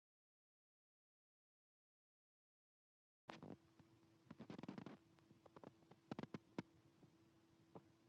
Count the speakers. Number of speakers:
zero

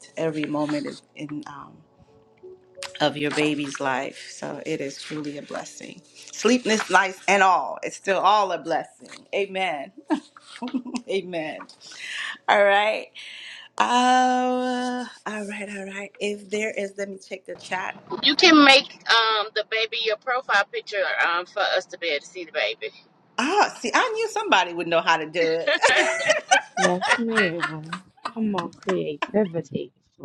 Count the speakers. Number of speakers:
three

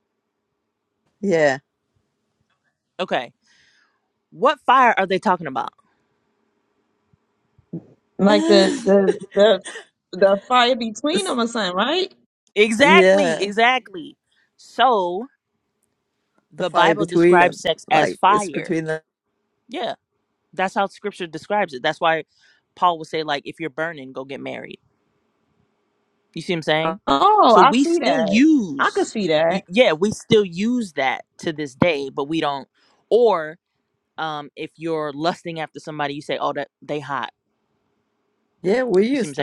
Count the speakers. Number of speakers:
three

